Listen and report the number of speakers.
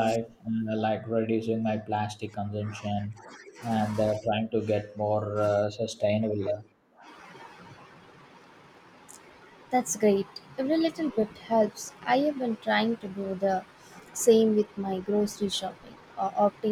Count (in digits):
2